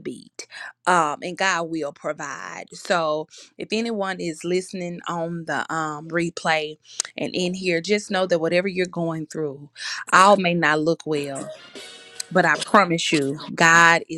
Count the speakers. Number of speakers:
1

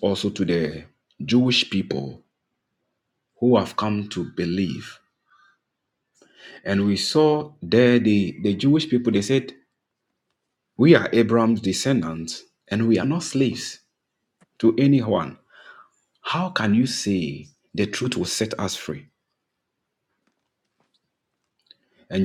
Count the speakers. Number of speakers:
1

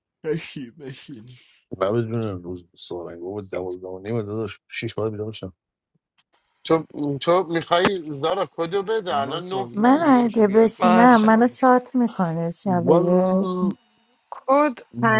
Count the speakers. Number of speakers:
5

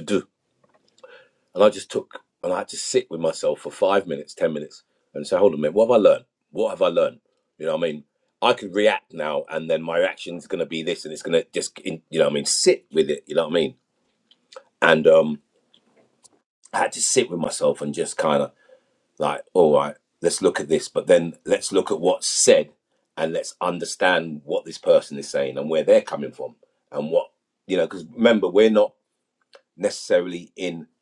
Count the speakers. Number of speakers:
1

